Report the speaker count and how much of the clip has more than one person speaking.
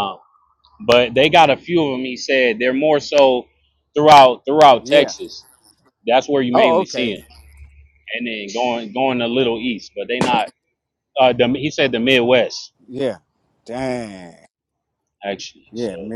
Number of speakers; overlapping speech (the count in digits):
2, about 6%